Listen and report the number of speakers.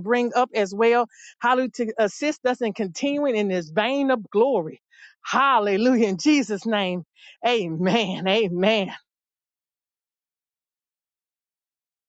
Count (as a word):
one